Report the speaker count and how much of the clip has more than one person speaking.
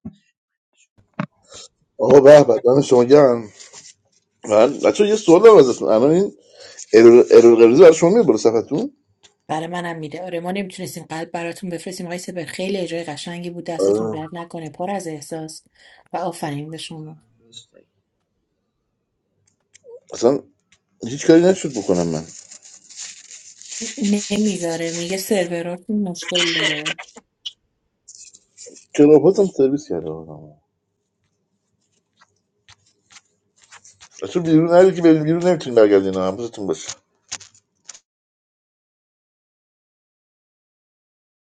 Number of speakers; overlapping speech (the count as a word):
two, about 1%